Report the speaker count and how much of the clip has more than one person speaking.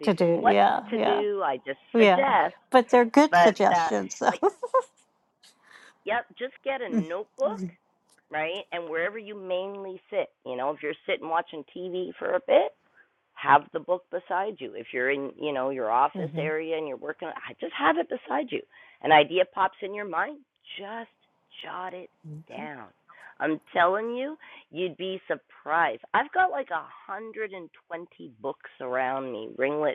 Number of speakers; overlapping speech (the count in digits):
2, about 9%